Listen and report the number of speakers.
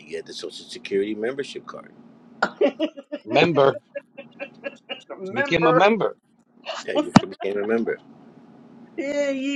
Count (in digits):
3